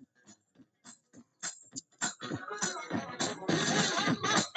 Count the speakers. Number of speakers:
0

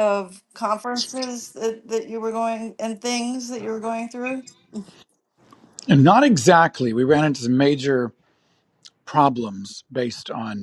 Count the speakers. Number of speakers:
2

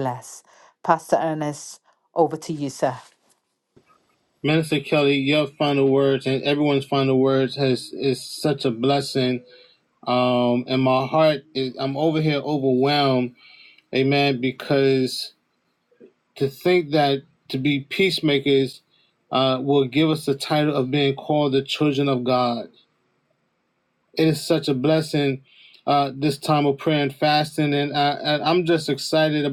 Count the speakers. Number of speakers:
2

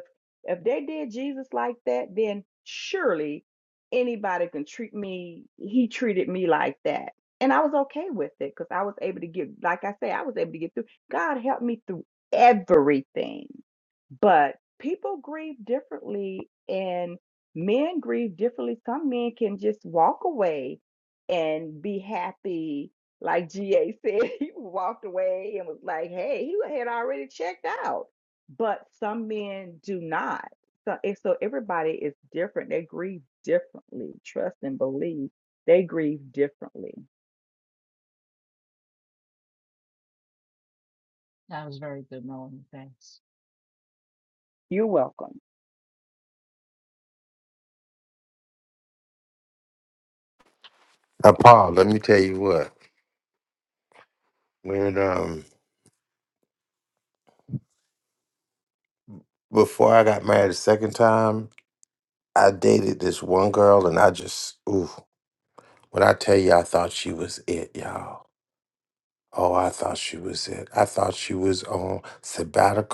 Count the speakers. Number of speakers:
3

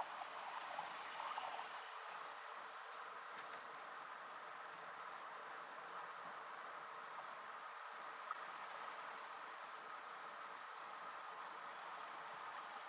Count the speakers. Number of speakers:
0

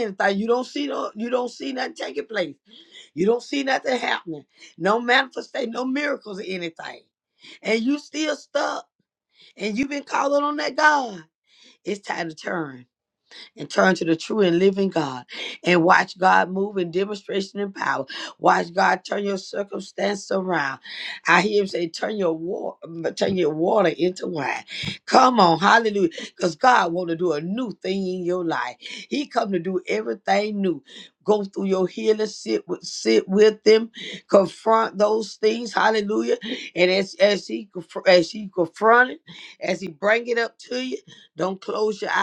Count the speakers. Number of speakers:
1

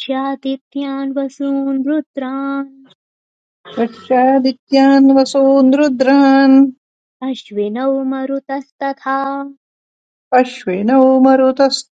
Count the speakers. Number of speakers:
2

